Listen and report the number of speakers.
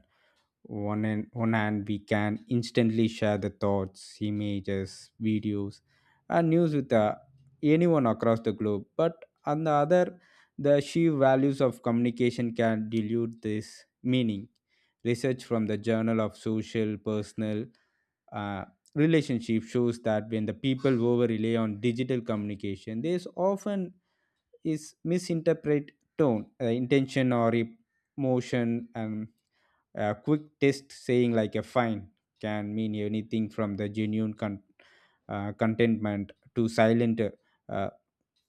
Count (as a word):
one